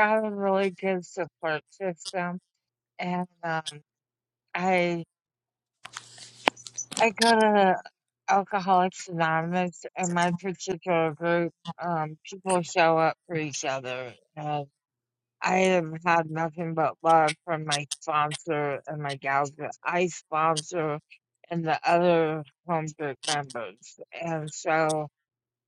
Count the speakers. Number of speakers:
one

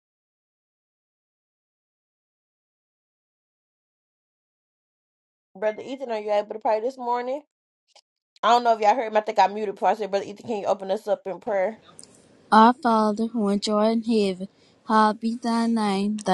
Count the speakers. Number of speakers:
two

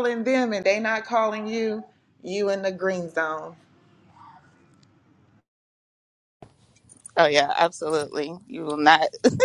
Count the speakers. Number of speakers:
two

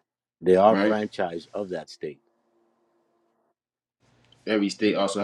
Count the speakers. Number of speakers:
two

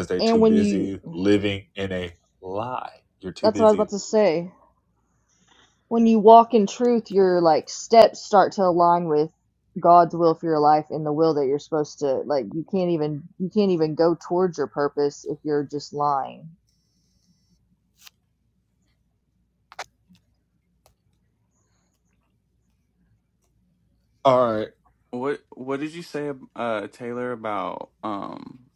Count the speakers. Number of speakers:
three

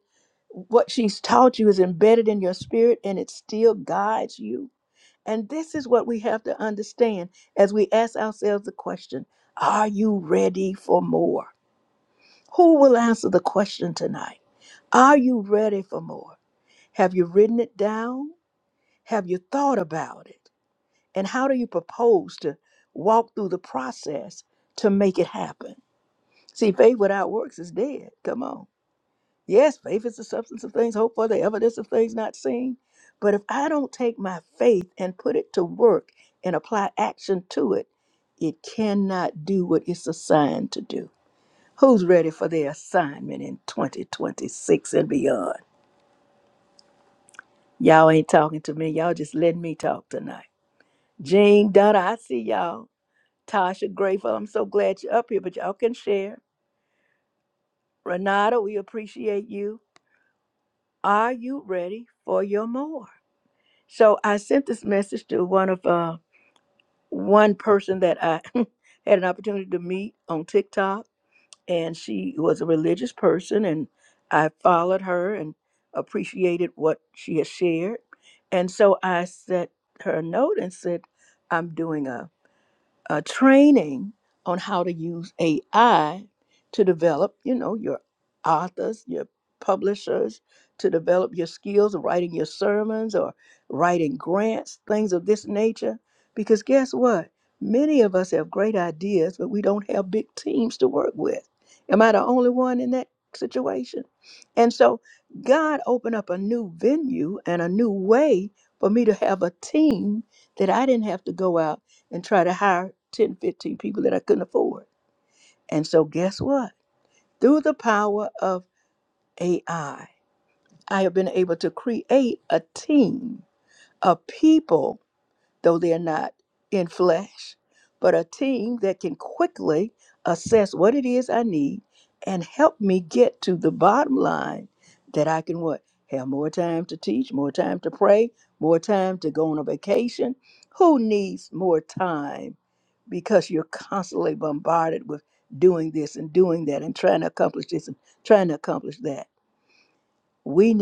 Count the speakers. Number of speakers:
one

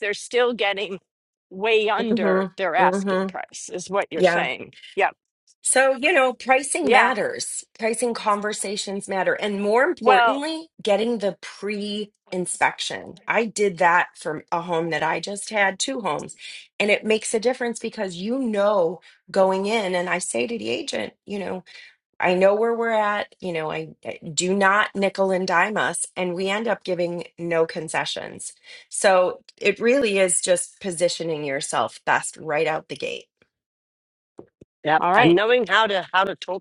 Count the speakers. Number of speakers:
three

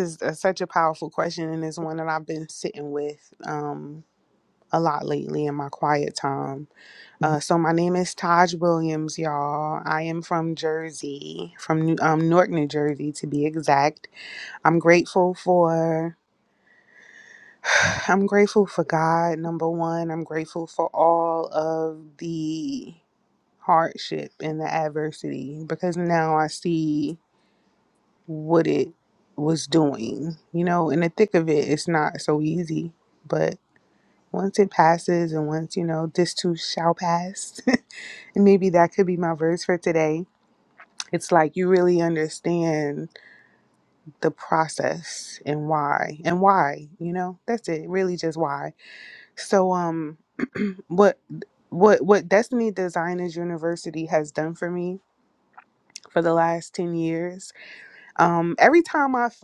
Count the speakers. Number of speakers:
one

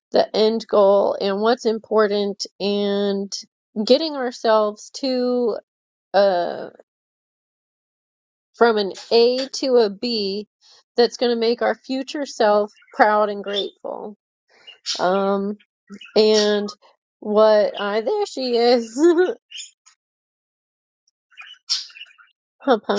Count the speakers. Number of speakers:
one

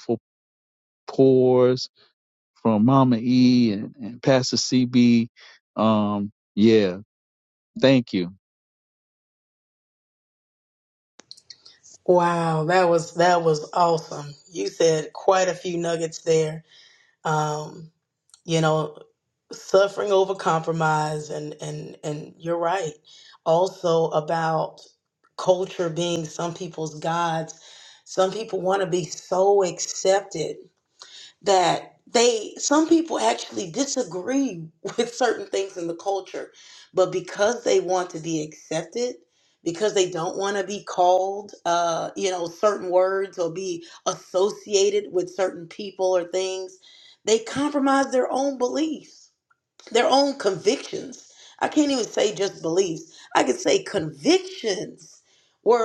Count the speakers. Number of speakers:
two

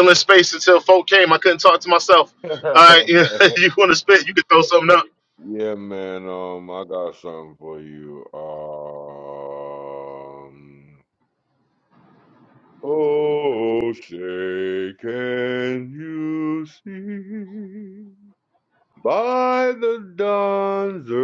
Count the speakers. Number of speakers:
two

